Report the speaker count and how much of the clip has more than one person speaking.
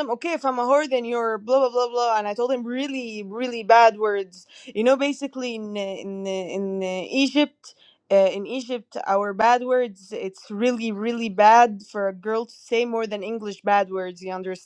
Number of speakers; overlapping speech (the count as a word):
one, no overlap